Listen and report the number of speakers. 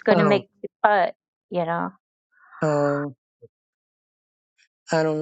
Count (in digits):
2